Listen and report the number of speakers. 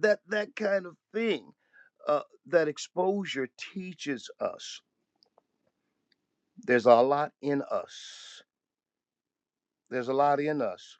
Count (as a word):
one